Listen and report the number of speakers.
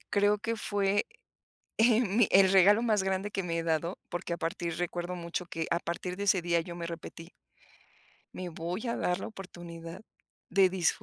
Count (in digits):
1